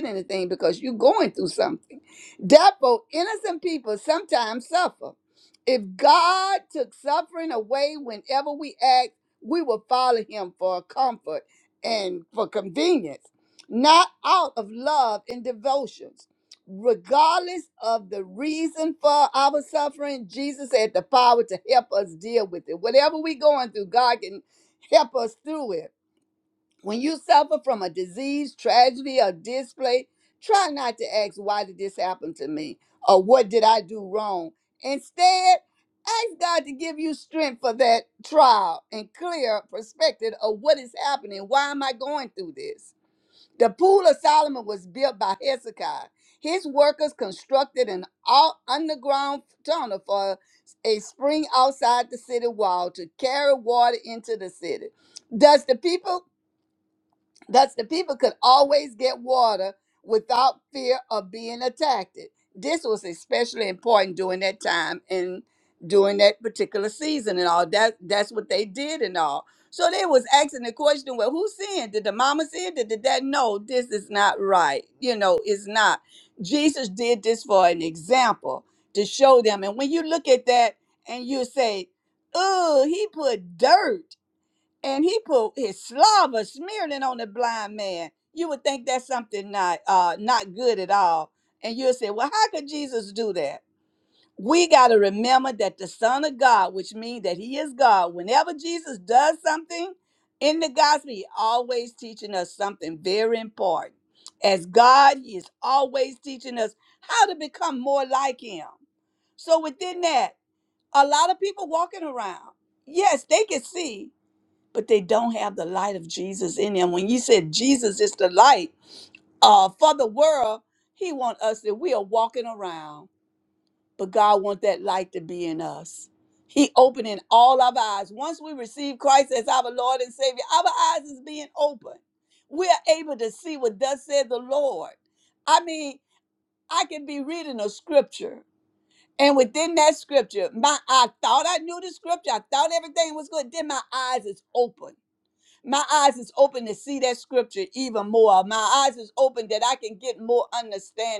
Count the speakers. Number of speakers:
one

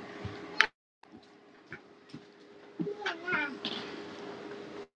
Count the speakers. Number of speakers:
zero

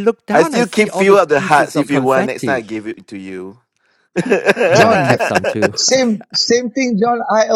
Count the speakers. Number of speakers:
three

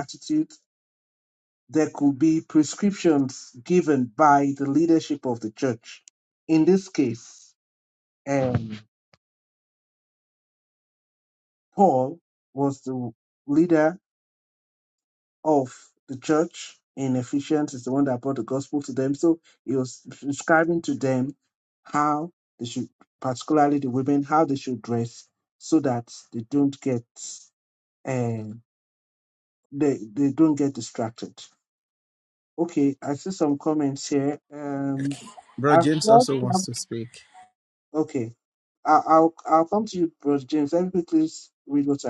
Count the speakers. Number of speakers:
two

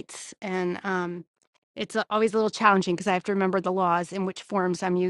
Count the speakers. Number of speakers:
one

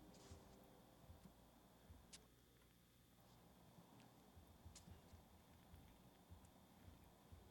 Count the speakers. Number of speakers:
zero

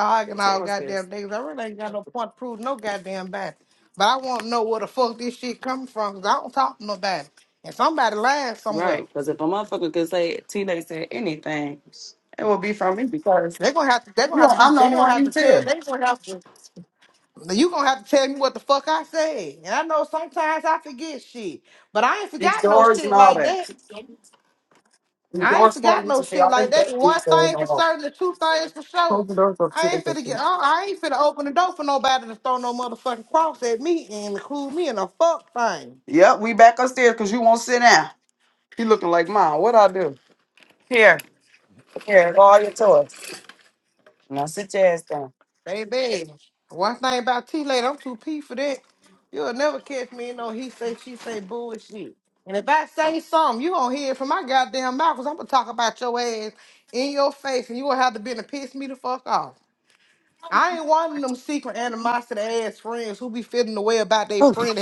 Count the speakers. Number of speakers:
two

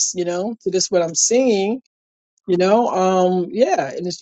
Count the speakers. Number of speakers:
one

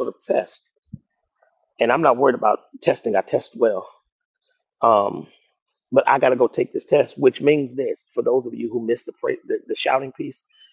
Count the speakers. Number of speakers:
one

